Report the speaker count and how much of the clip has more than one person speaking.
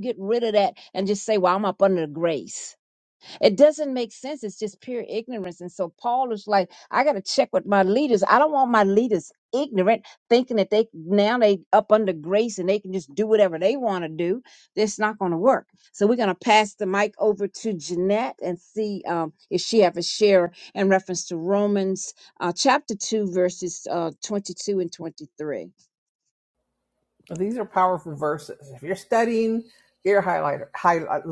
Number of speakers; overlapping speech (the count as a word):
two, no overlap